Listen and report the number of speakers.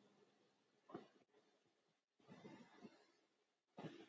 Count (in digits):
0